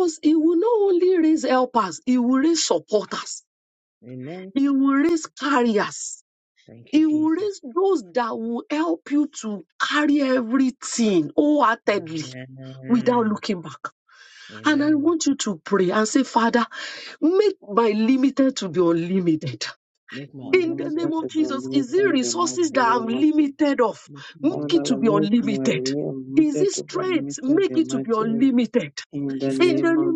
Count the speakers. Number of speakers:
3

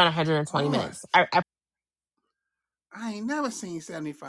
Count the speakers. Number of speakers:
2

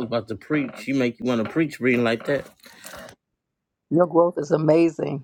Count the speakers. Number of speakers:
2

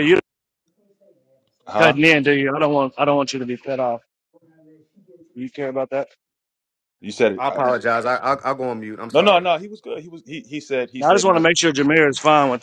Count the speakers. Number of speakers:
3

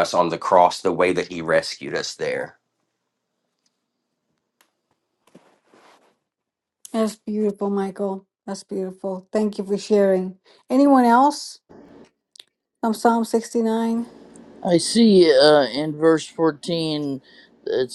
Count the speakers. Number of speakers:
3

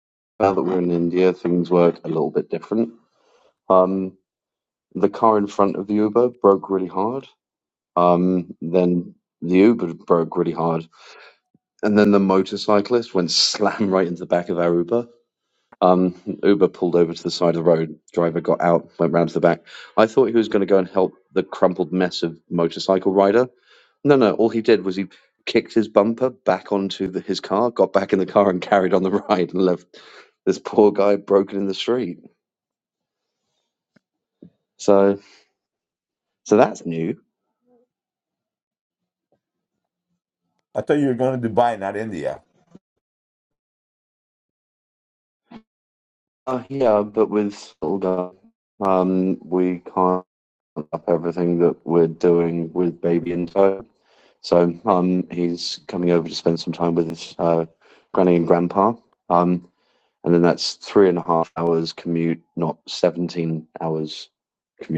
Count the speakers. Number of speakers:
2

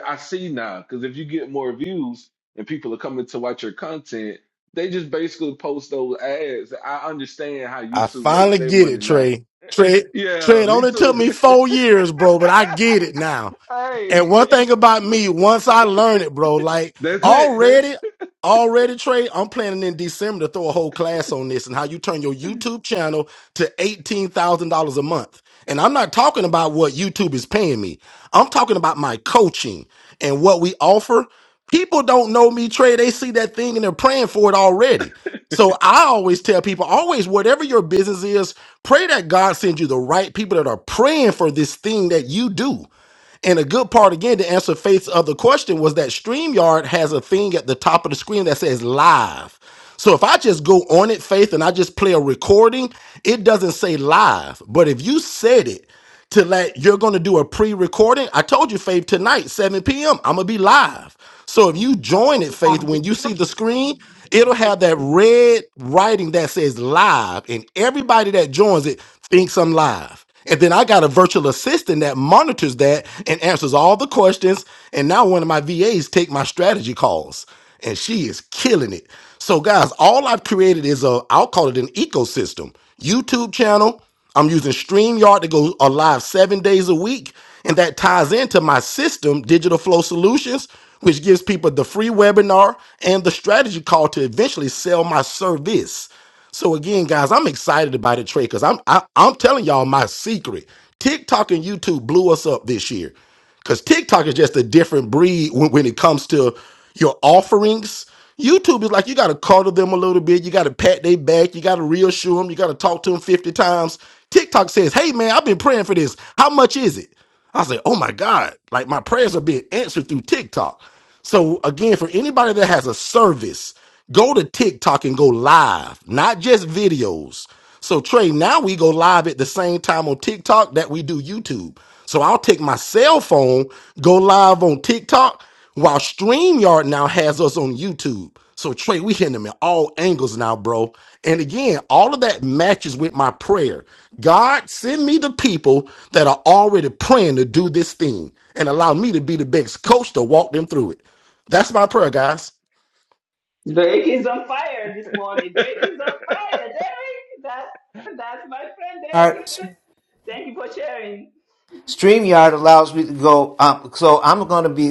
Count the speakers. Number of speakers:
4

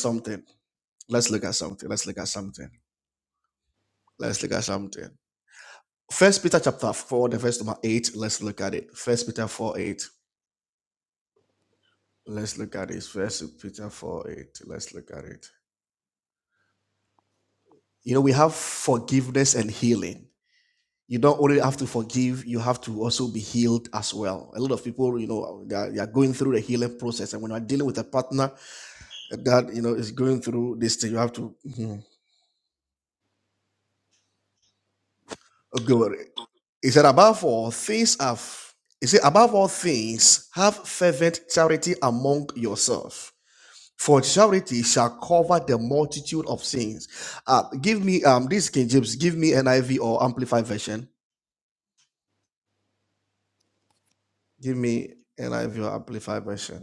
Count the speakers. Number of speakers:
1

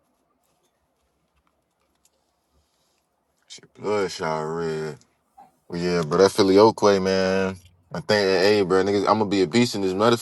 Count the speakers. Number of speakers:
1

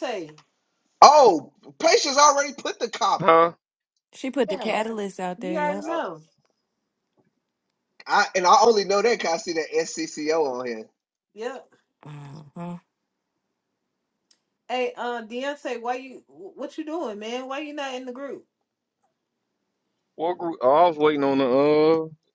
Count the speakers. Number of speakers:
4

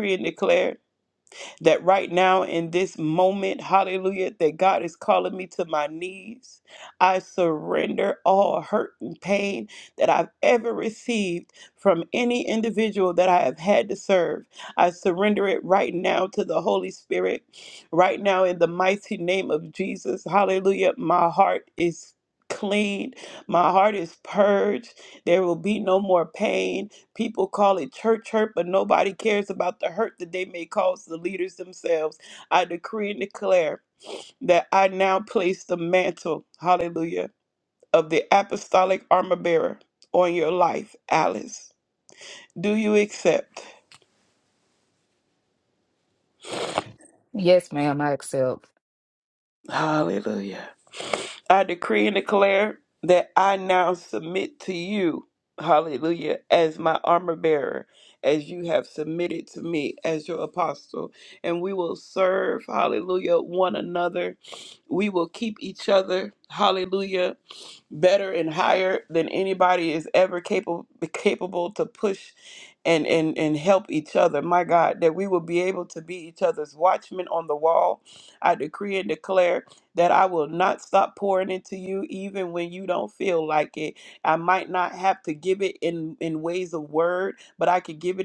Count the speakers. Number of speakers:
2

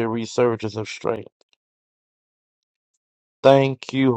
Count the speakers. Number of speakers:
1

